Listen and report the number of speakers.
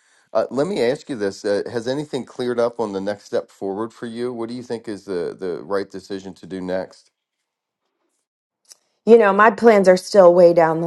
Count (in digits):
2